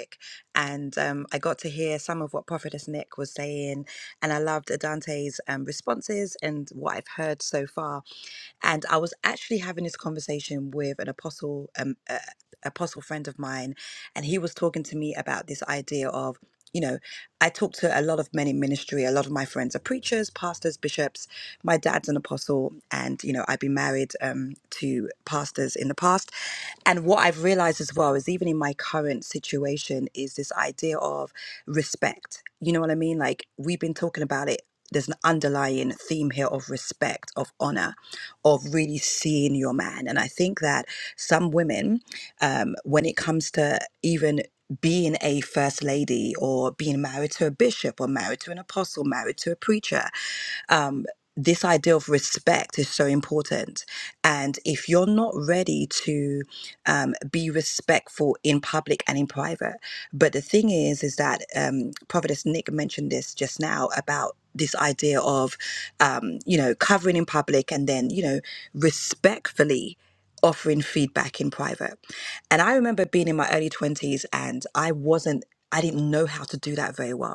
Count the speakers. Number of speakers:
1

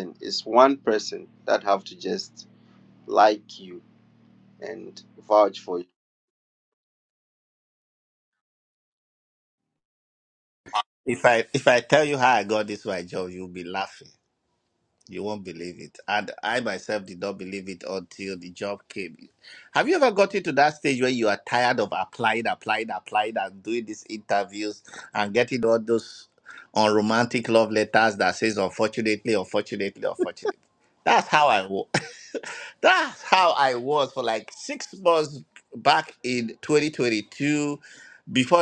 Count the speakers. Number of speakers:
2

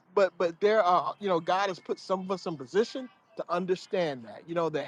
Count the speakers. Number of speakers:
1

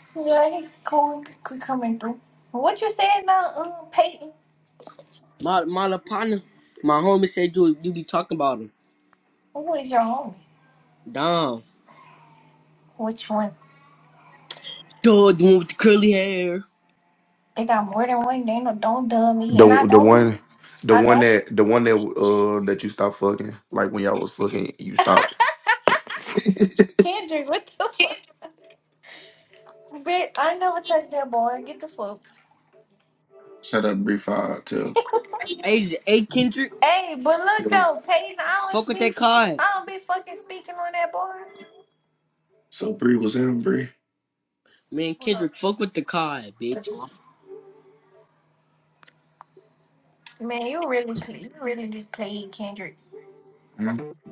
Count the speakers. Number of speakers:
3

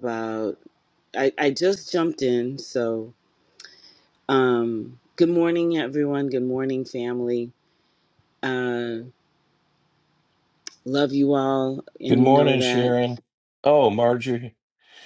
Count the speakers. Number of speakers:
2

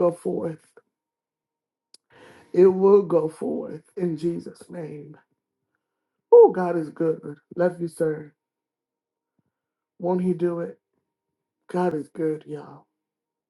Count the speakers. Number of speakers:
1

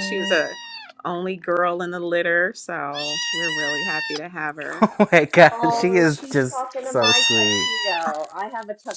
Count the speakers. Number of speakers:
3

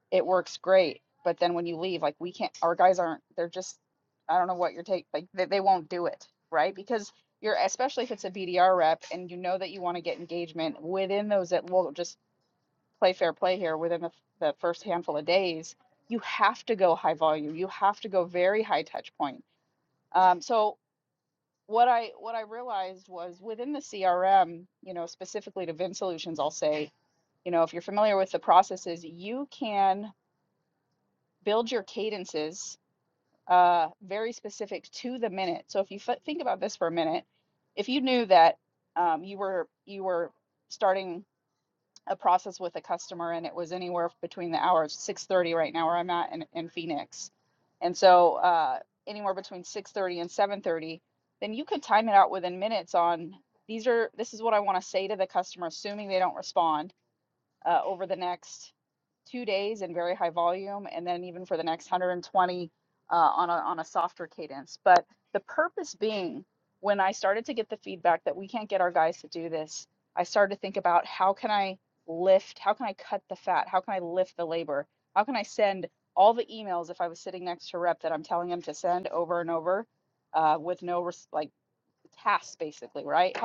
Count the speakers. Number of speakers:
1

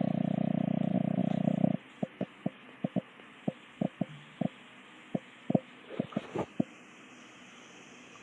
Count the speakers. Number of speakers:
0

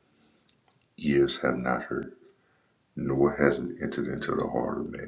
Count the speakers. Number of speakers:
1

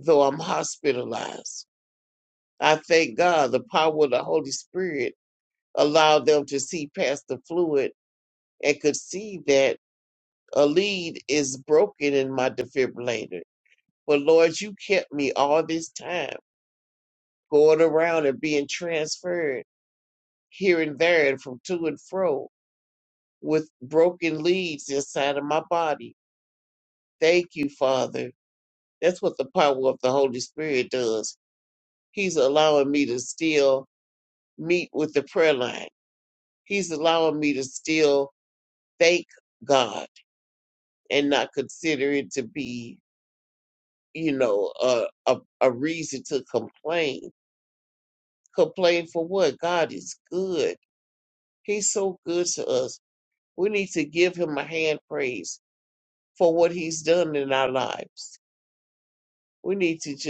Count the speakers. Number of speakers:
1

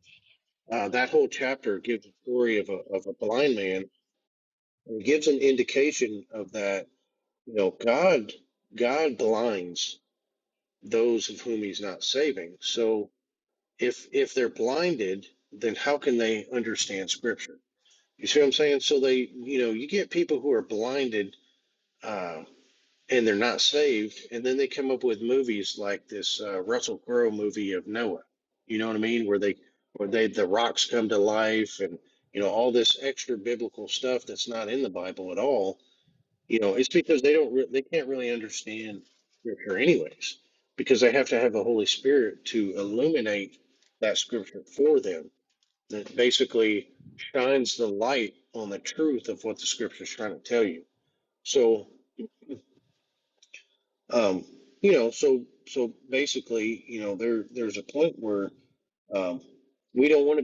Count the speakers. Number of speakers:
1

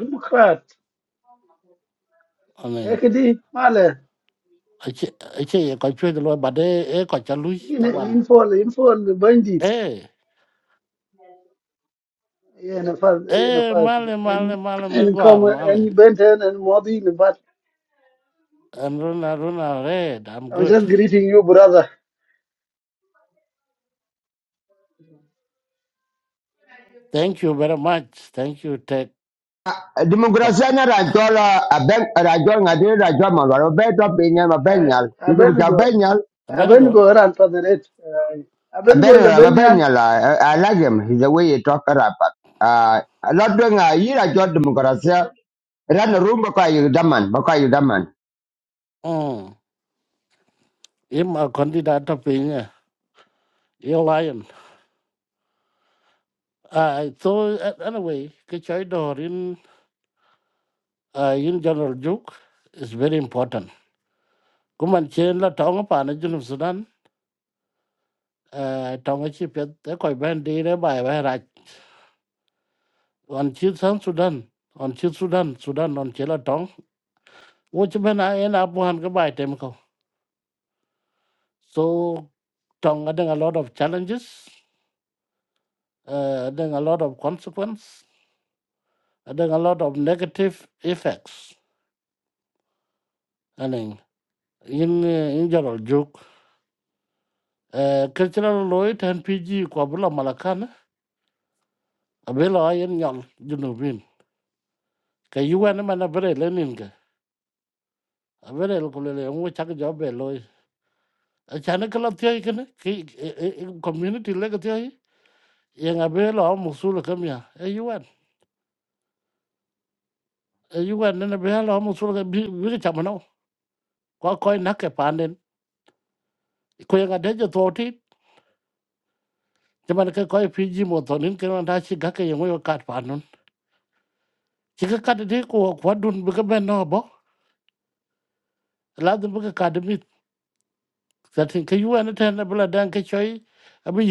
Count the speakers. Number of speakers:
3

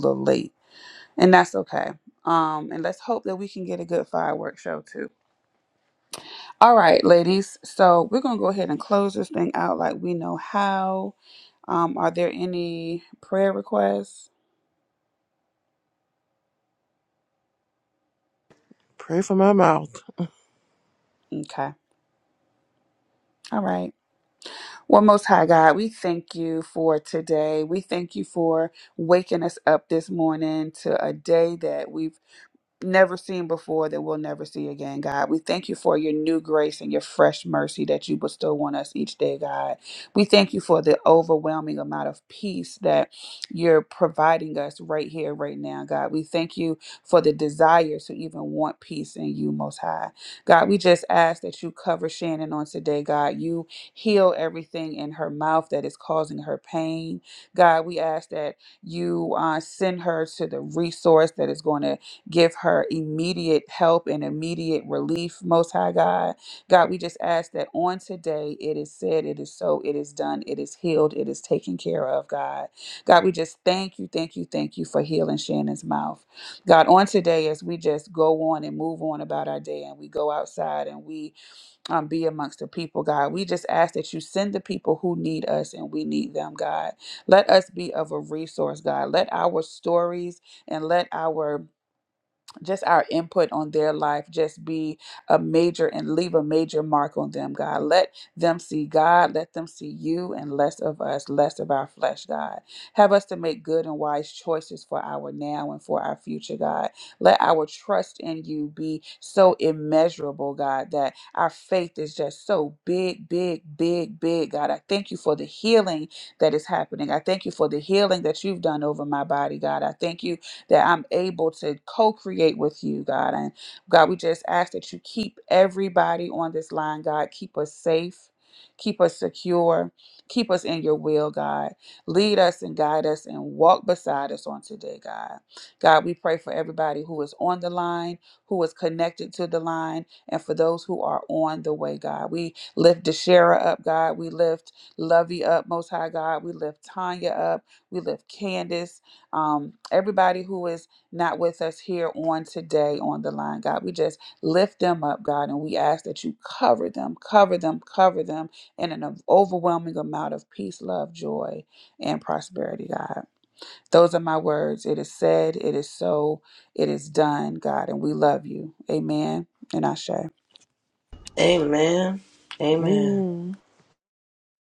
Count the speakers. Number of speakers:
3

